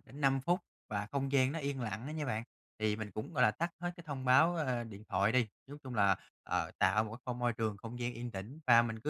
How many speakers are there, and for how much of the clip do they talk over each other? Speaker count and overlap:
one, no overlap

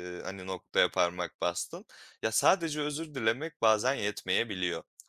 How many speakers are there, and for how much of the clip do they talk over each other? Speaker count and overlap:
one, no overlap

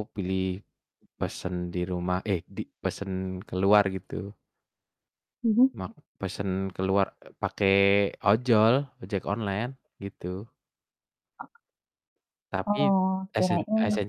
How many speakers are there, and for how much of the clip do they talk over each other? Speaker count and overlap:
two, about 4%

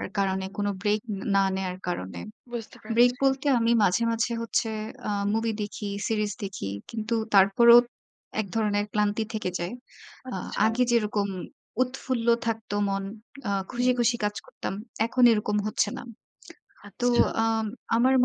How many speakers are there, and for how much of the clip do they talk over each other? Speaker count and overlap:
two, about 7%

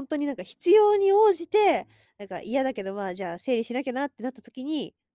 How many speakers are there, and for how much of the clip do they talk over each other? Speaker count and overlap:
one, no overlap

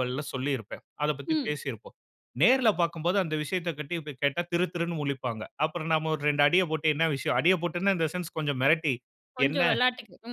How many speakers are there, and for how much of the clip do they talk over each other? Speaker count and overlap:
two, about 5%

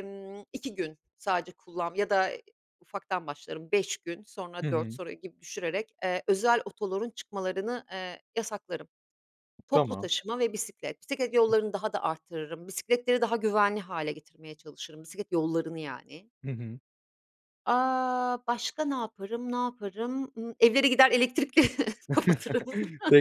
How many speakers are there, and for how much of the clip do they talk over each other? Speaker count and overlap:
two, about 3%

